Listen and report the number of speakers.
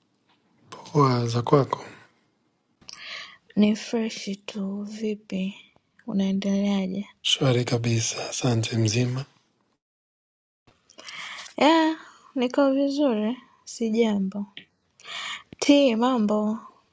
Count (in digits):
2